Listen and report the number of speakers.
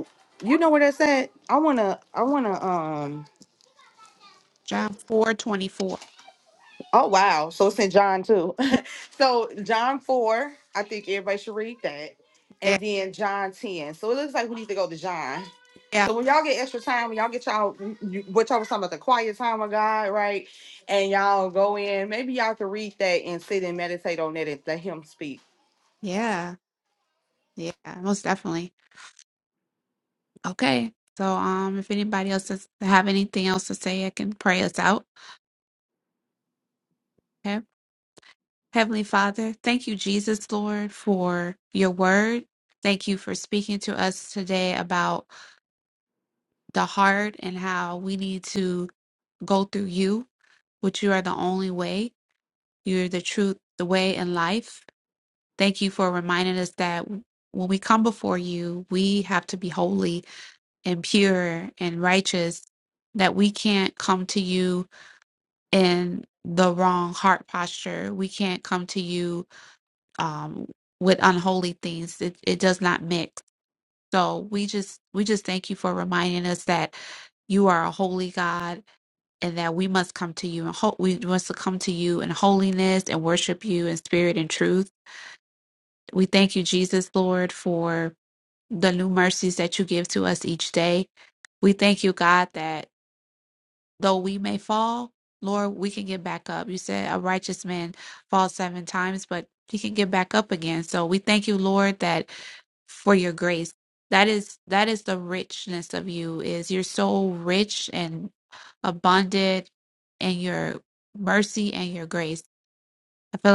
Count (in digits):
2